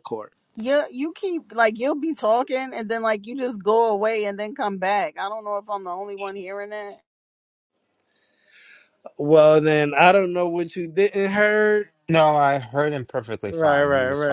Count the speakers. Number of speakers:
3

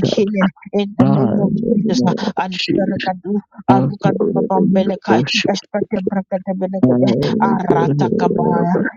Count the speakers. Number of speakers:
2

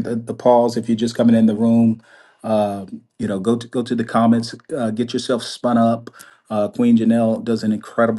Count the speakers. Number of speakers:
1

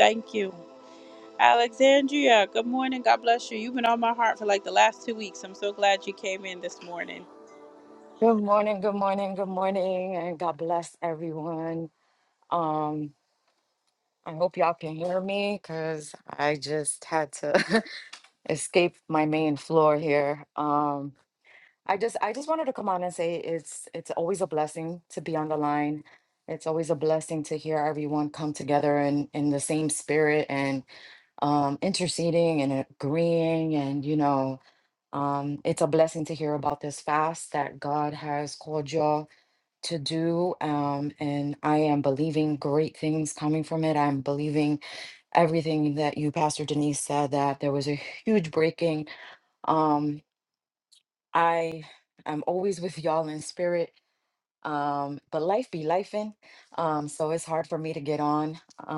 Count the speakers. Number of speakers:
2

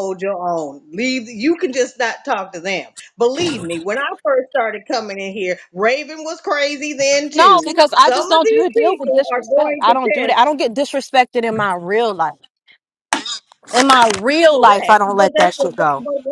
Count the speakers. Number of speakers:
2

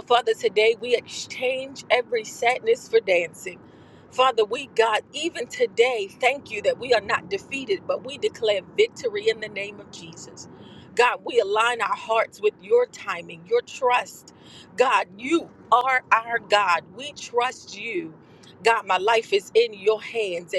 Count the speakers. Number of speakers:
1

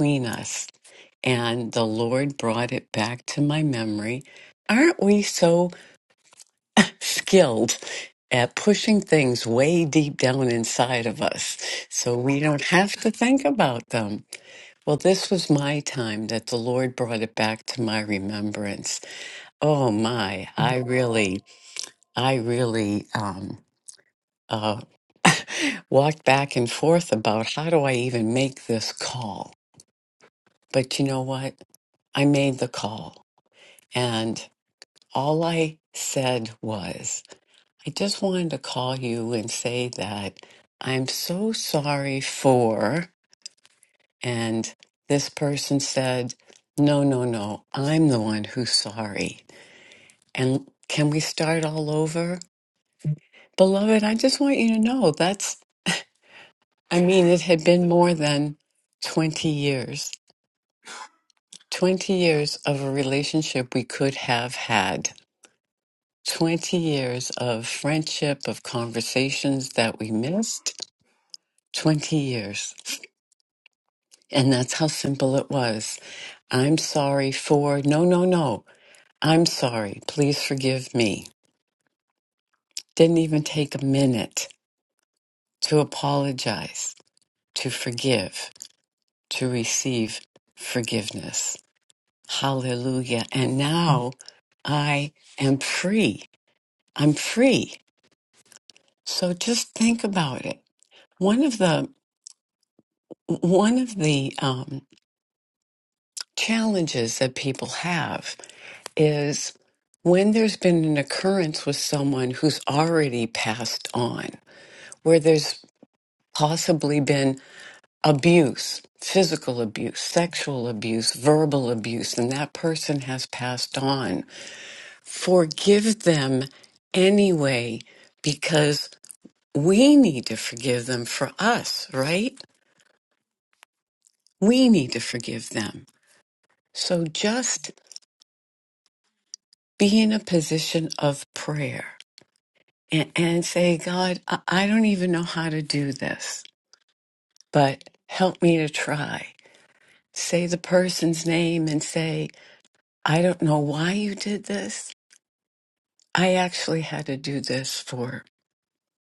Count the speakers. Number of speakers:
1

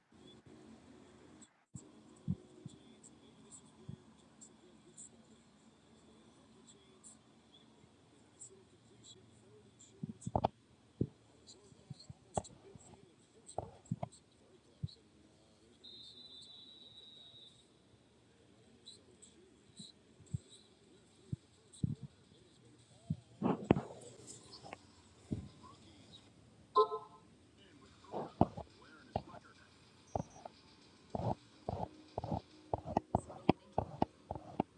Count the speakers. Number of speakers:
0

